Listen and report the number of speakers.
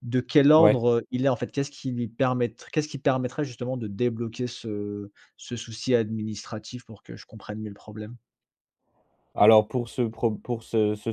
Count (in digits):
2